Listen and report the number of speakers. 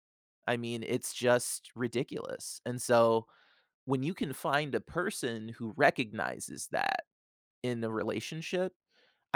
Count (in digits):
1